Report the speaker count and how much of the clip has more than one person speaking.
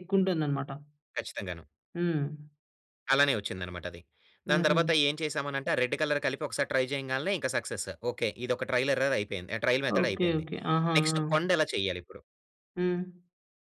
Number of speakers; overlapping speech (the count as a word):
two, about 9%